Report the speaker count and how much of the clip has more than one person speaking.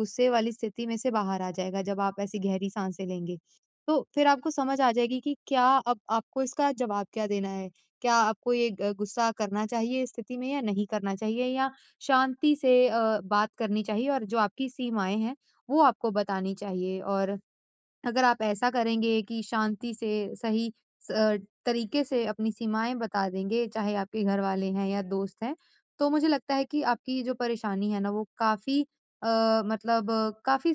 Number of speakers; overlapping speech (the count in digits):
1, no overlap